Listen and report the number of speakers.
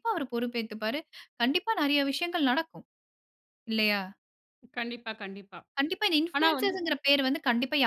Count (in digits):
2